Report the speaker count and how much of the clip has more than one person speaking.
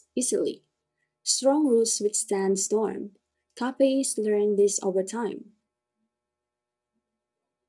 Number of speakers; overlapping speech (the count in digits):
1, no overlap